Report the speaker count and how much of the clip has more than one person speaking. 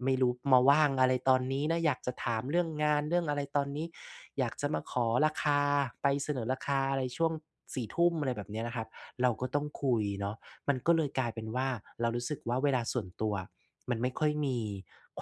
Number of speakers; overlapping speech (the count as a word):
one, no overlap